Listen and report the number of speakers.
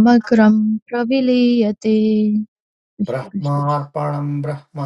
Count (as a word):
two